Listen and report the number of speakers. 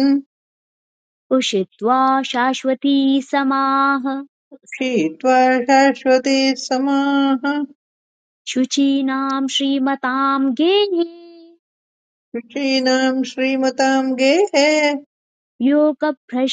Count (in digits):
2